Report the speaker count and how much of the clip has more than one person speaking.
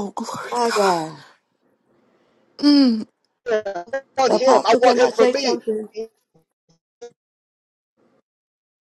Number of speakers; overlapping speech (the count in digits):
3, about 21%